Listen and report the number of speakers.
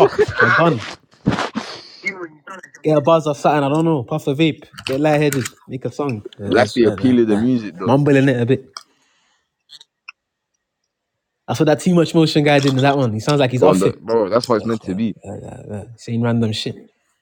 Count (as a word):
two